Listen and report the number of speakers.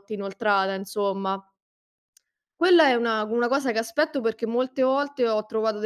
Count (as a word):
one